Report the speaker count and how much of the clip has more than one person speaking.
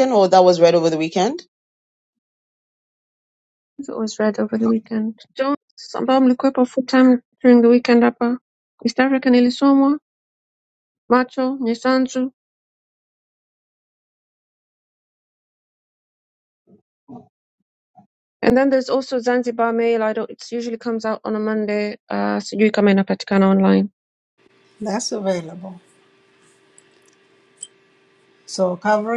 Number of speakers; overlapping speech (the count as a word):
three, no overlap